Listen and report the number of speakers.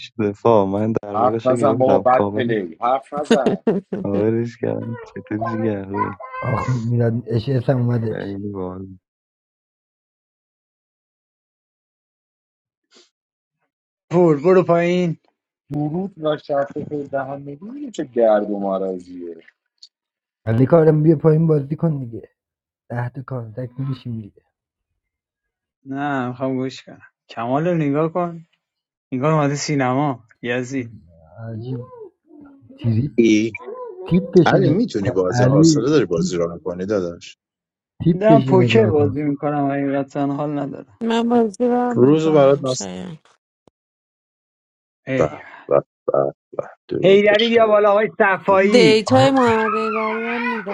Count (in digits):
6